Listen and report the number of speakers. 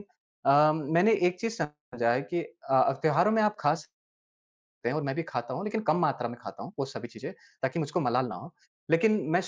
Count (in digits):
1